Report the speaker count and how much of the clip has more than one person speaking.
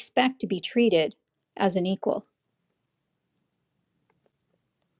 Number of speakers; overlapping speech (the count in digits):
1, no overlap